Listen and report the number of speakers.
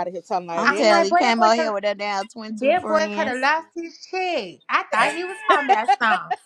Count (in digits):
3